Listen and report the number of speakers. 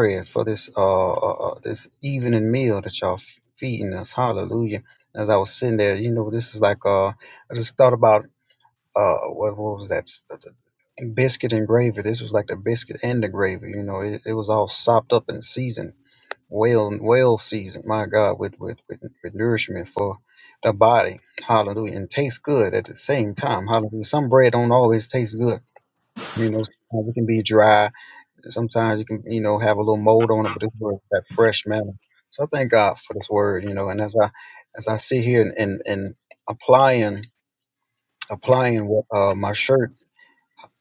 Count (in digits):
1